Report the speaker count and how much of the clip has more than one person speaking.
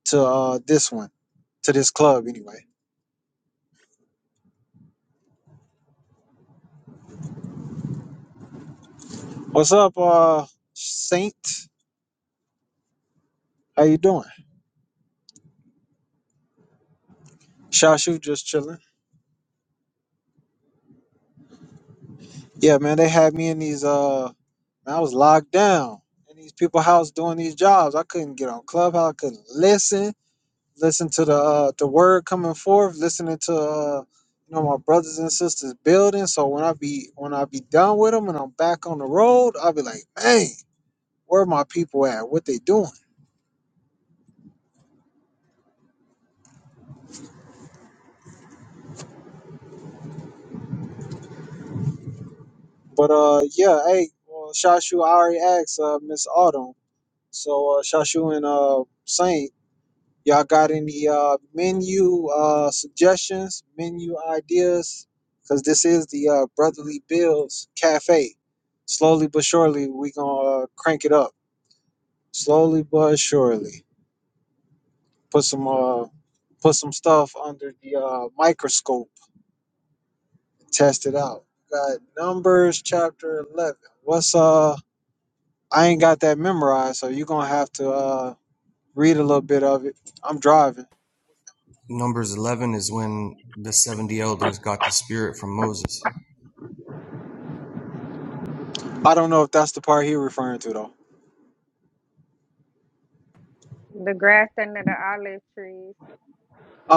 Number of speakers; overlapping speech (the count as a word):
three, no overlap